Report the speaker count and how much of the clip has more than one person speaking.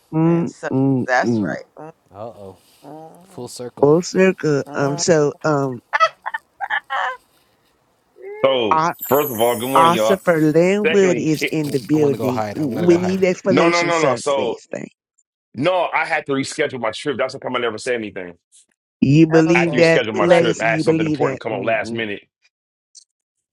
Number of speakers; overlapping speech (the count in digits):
4, about 33%